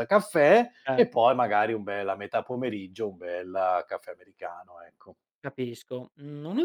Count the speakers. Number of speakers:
2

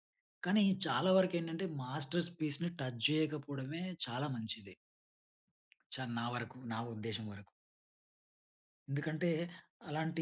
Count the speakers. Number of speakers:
1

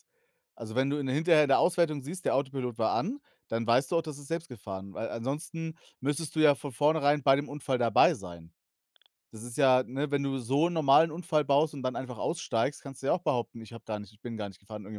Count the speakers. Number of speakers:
1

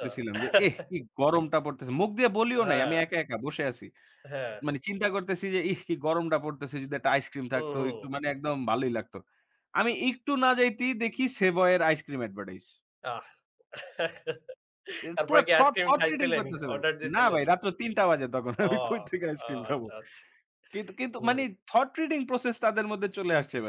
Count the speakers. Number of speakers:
2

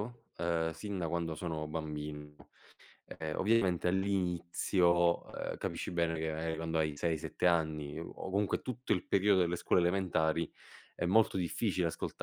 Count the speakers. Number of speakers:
1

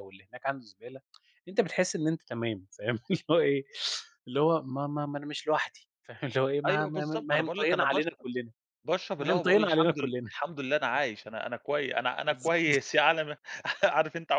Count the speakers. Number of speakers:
2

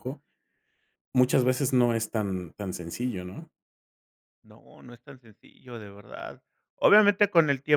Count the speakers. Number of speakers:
2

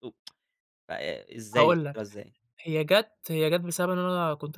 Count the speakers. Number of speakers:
2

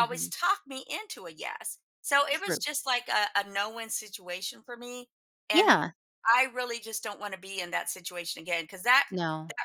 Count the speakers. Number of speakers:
2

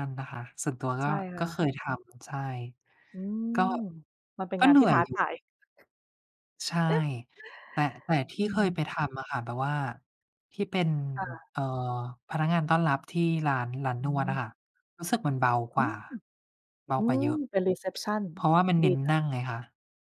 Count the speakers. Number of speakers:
2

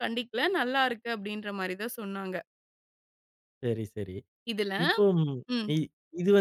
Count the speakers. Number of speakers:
2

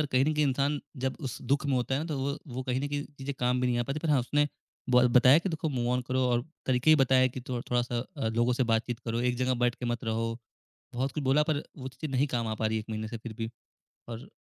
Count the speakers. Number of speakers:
1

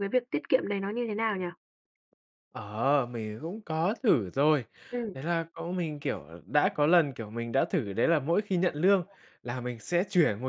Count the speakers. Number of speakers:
2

